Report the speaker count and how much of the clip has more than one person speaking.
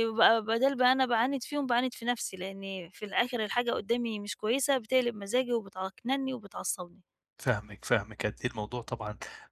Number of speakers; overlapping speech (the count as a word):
two, no overlap